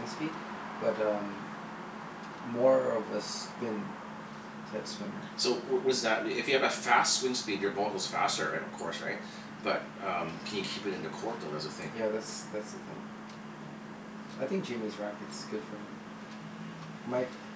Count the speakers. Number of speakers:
2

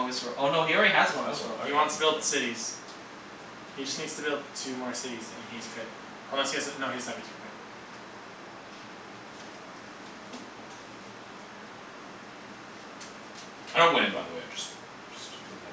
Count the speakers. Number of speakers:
3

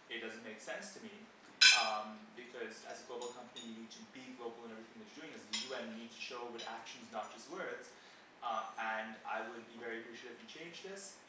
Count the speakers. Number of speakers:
1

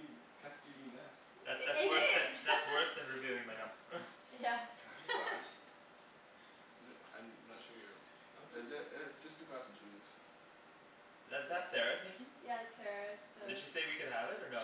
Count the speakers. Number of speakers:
4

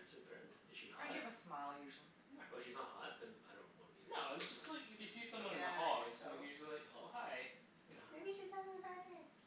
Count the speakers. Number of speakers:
4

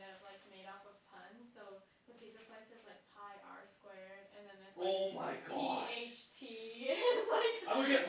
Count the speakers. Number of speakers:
2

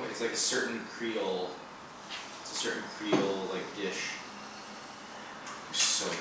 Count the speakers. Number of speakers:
1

